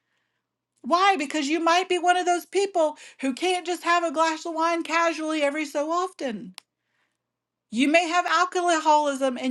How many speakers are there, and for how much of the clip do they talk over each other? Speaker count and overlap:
1, no overlap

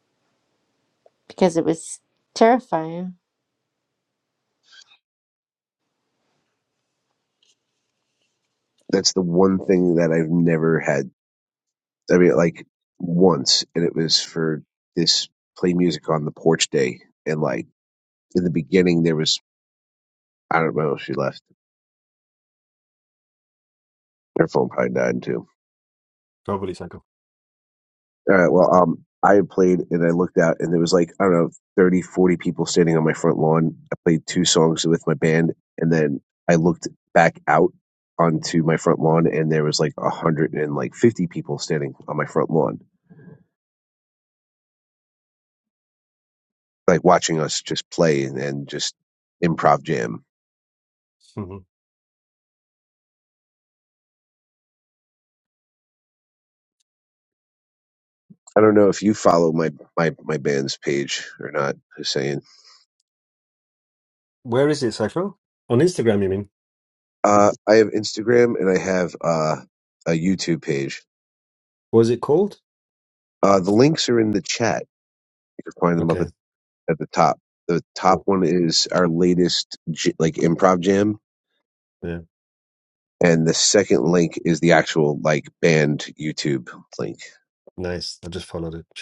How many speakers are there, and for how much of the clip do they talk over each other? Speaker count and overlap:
3, under 1%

